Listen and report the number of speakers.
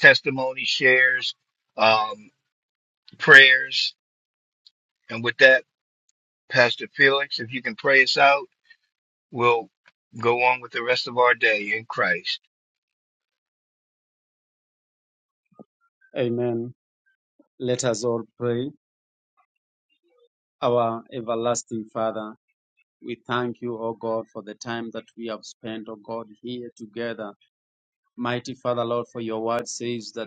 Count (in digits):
2